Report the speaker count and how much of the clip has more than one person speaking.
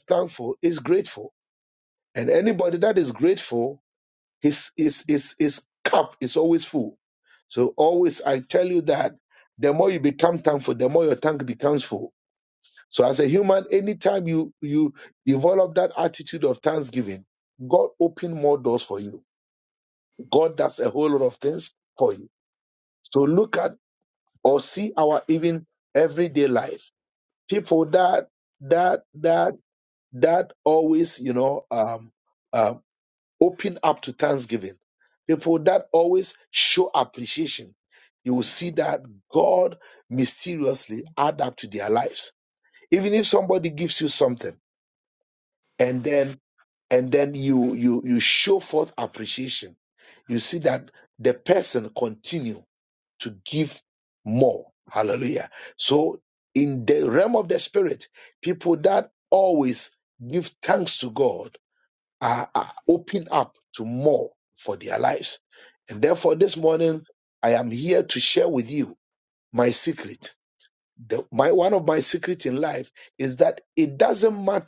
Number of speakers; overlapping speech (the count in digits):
1, no overlap